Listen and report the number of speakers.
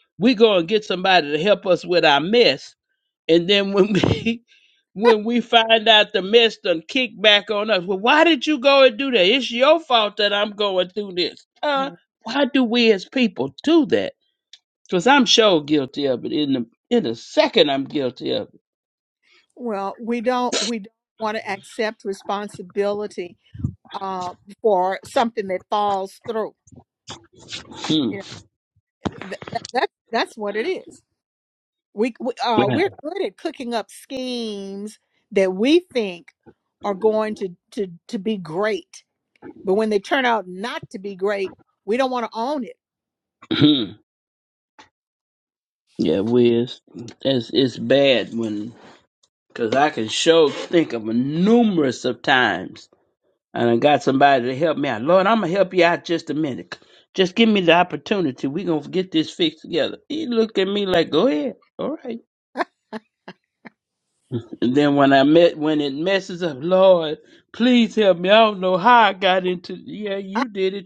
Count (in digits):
2